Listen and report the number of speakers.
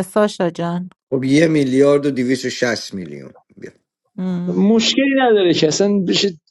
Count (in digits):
3